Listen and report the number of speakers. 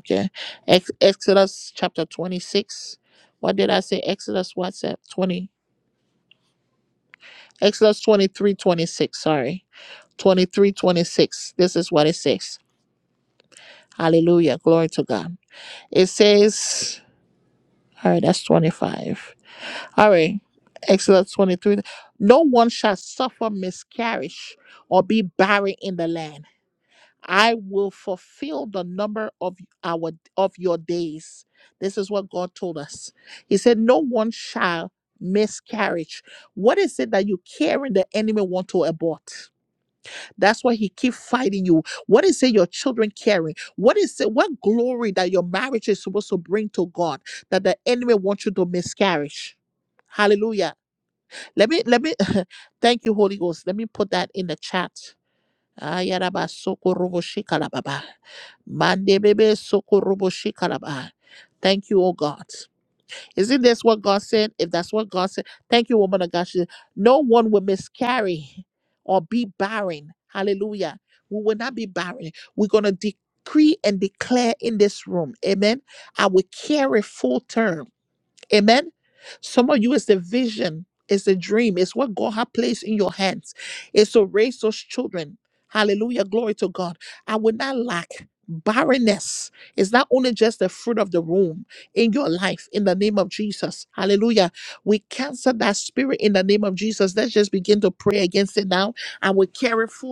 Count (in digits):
1